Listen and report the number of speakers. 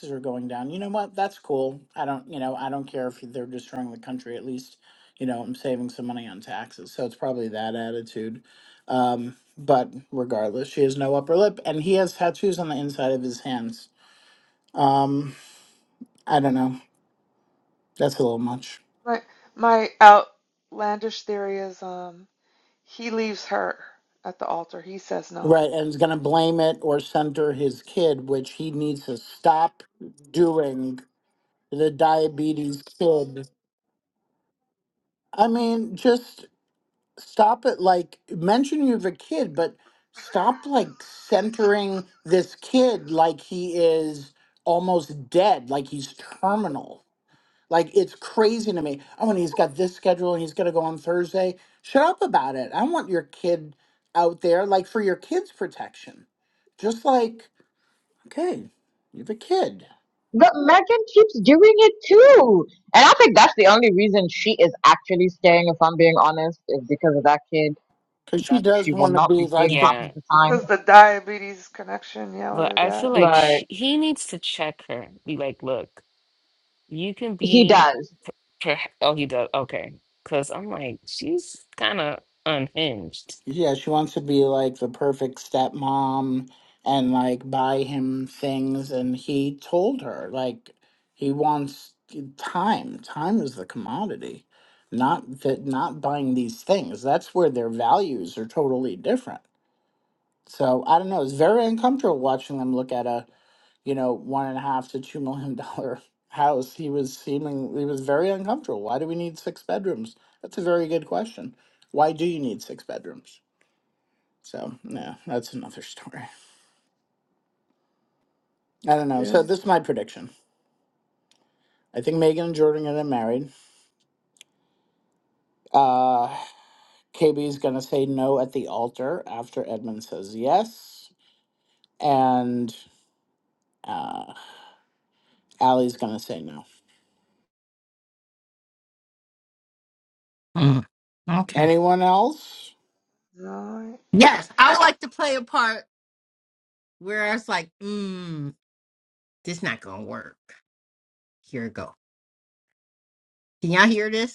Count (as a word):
five